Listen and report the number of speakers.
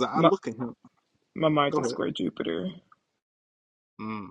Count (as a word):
two